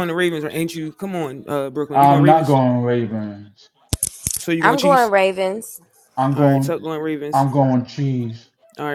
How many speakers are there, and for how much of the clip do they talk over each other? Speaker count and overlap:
3, about 16%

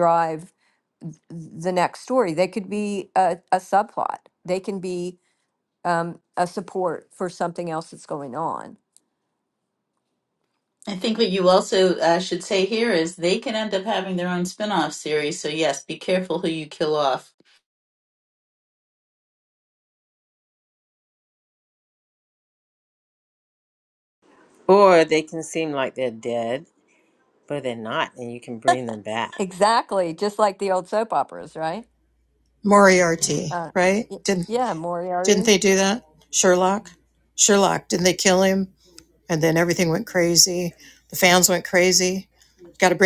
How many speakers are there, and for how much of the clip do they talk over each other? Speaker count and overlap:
4, about 2%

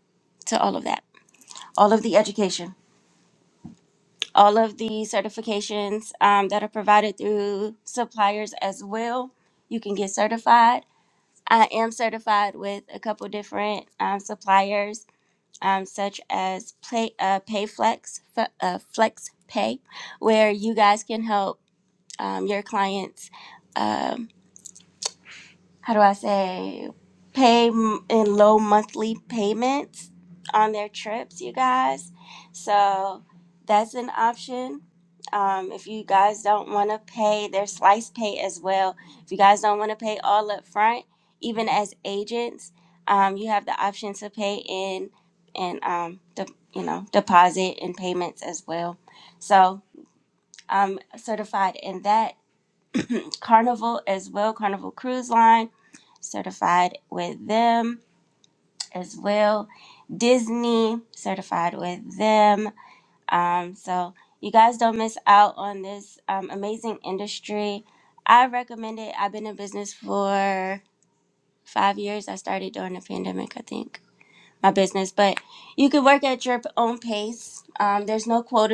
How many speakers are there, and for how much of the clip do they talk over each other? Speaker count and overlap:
1, no overlap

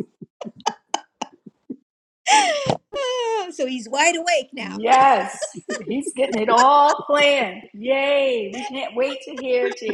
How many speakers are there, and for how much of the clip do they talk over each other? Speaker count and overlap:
2, about 2%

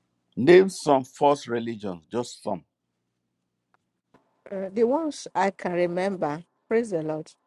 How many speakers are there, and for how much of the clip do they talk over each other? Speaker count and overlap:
2, no overlap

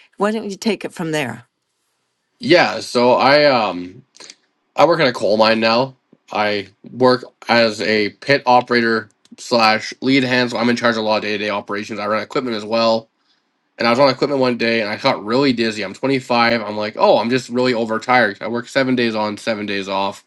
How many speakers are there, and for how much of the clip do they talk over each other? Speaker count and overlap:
2, no overlap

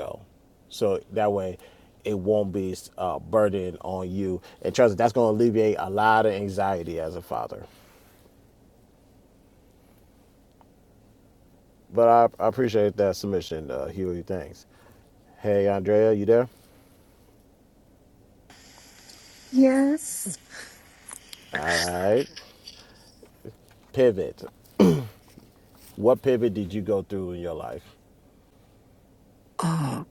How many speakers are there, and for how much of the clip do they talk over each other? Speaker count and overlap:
2, no overlap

